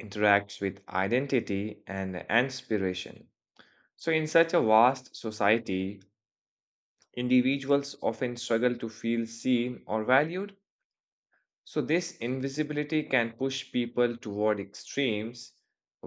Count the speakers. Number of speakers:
one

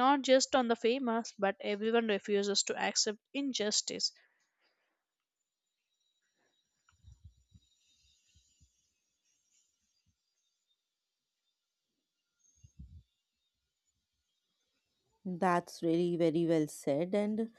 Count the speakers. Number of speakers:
two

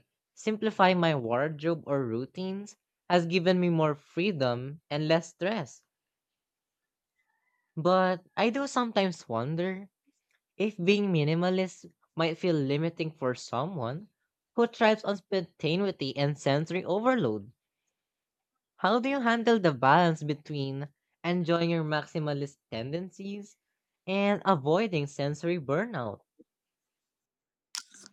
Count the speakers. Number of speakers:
one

